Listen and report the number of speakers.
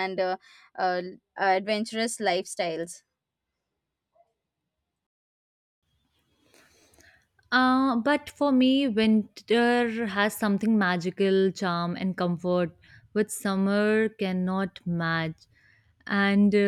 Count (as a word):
two